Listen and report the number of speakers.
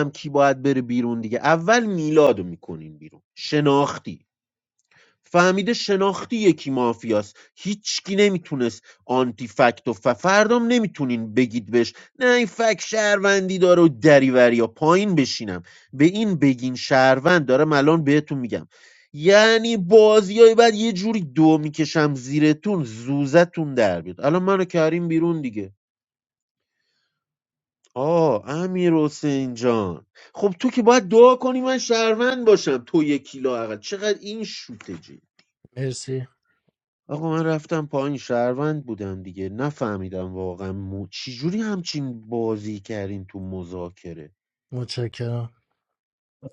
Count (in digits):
2